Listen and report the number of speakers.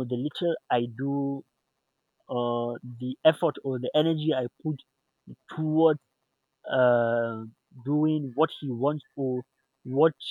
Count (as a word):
one